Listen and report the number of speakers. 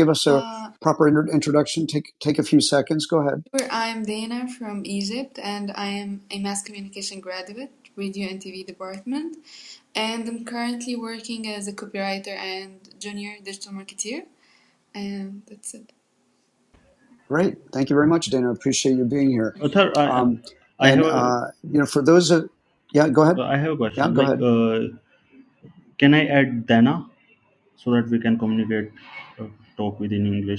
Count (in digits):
3